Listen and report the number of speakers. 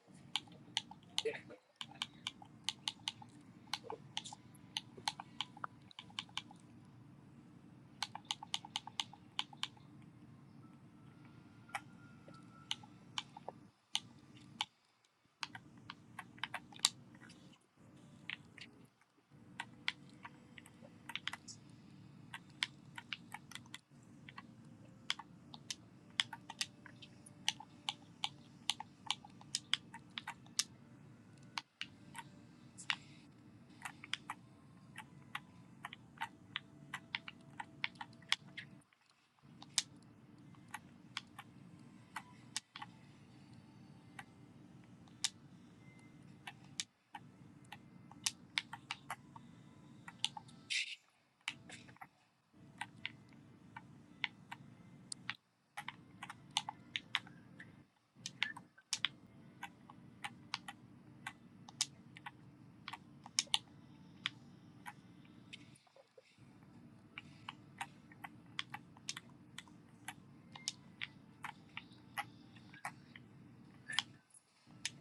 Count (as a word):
zero